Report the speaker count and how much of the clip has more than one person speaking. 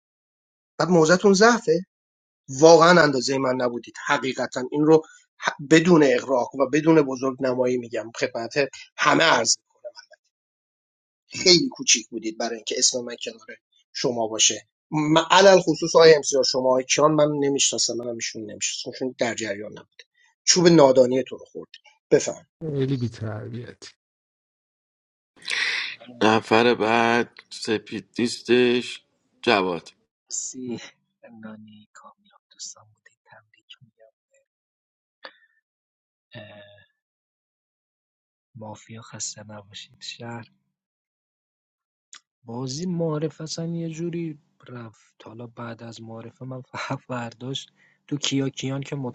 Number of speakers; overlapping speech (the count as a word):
four, no overlap